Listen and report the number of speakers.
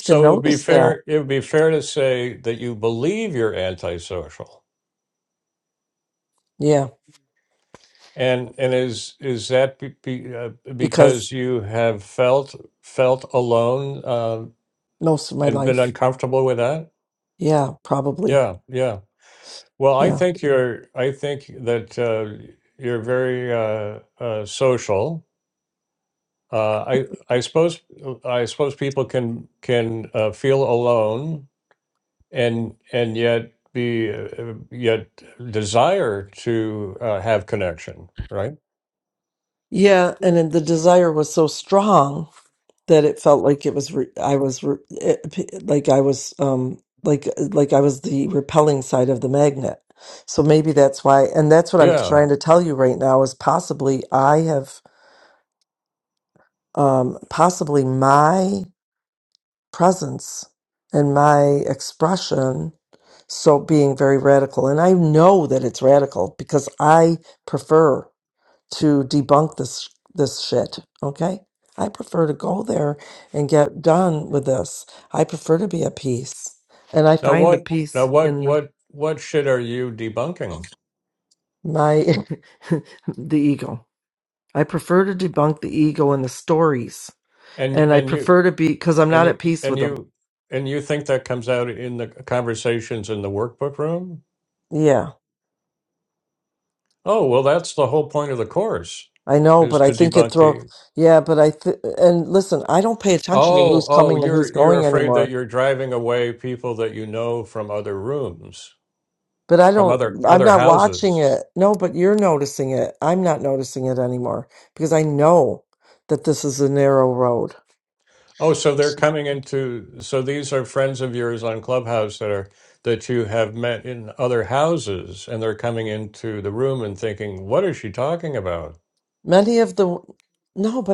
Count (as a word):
two